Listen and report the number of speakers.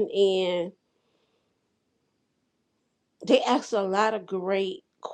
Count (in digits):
1